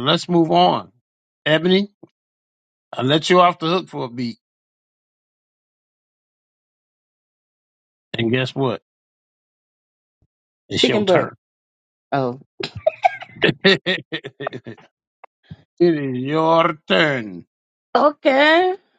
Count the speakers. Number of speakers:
2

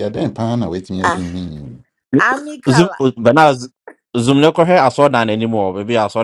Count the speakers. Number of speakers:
3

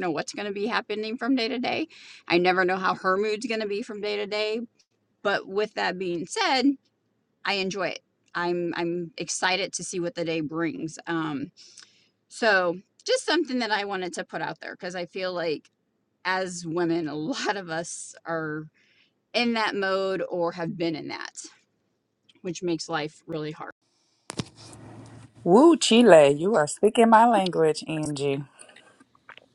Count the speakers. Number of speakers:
2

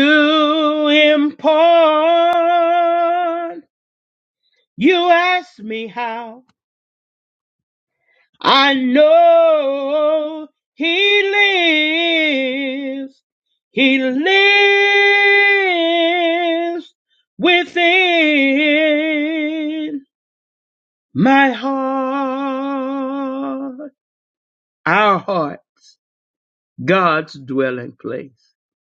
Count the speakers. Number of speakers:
1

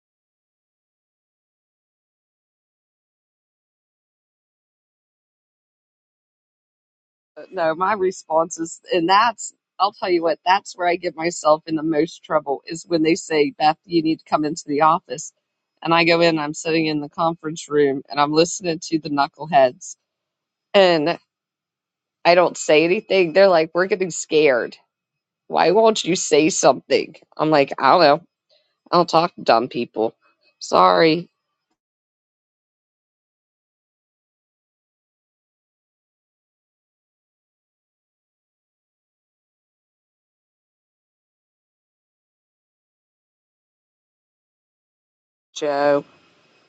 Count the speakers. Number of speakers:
1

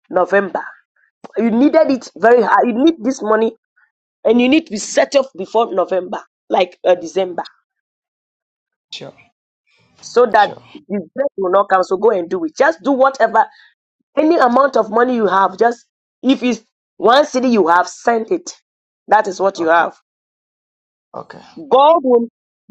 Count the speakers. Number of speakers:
2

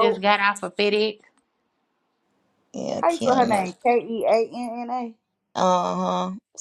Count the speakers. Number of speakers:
3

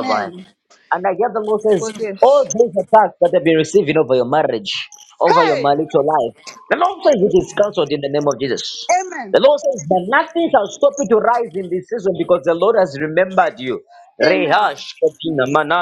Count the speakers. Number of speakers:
2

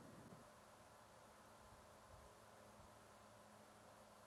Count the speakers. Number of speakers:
0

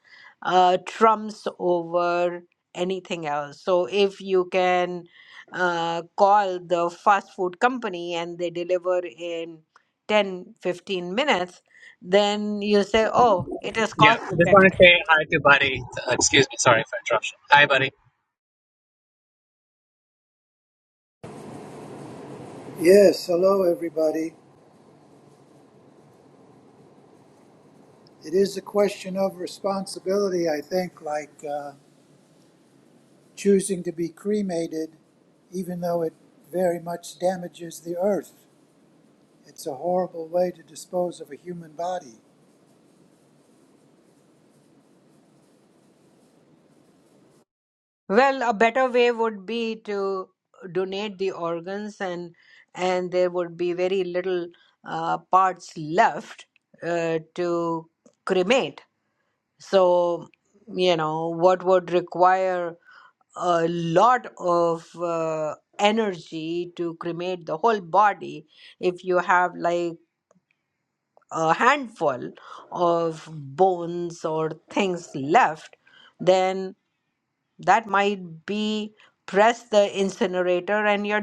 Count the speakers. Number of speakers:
3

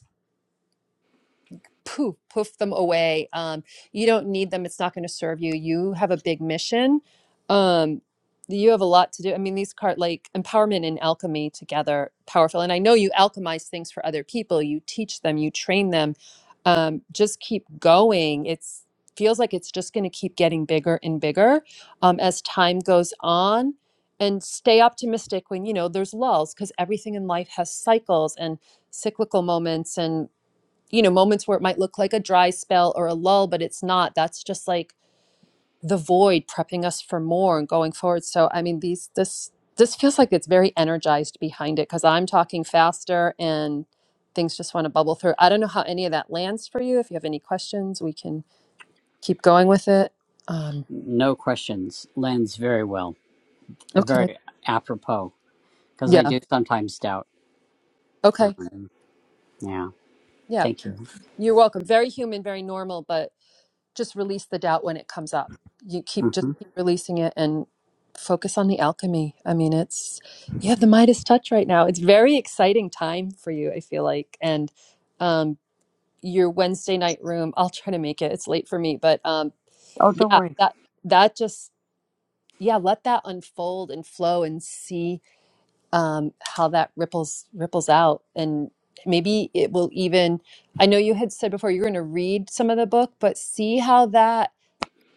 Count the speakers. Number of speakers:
2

